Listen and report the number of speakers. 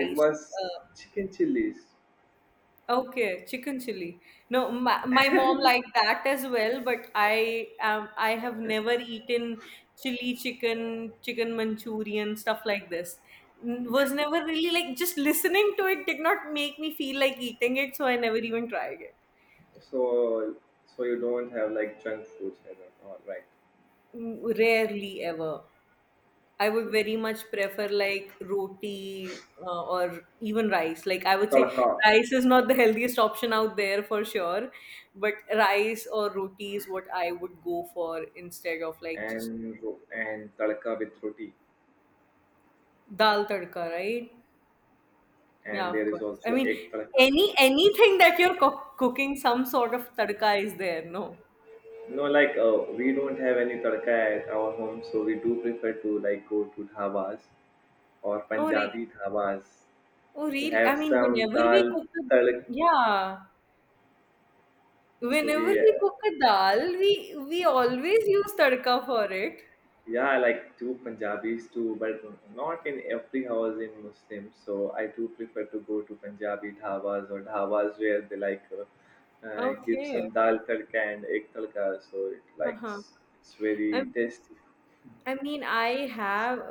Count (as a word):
two